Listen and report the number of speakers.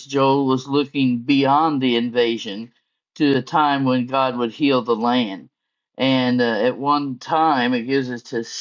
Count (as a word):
one